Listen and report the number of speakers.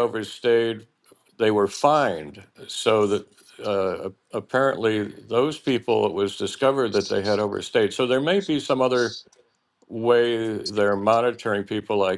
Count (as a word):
one